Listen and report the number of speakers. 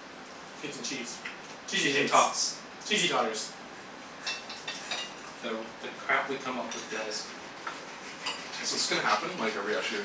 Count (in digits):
3